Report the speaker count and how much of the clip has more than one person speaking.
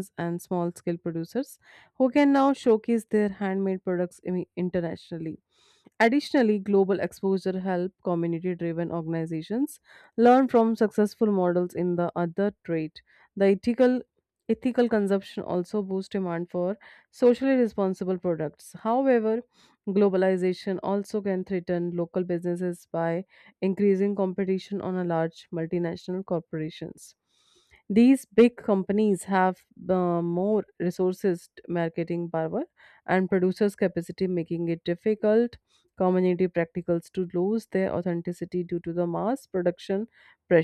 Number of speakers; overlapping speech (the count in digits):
1, no overlap